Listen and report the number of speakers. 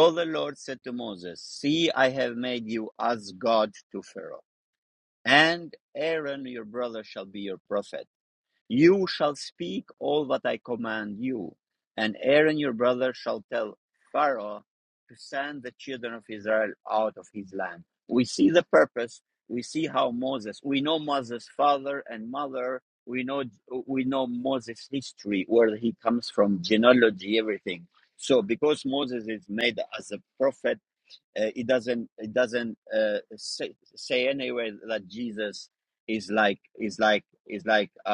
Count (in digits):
1